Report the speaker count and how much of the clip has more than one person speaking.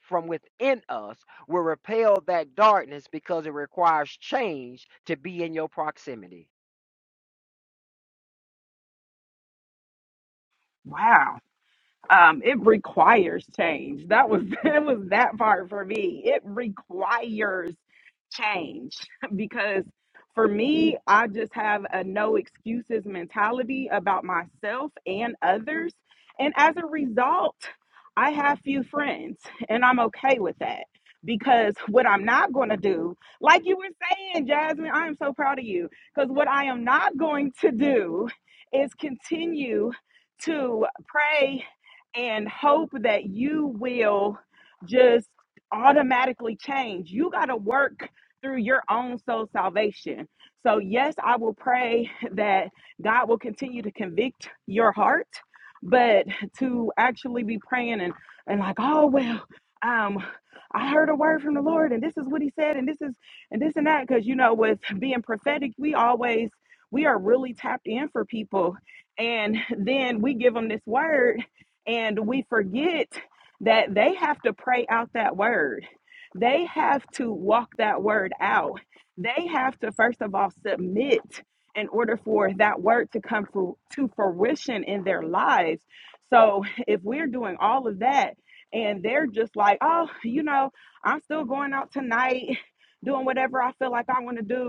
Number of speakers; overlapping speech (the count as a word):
two, no overlap